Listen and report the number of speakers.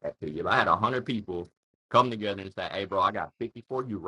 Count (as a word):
one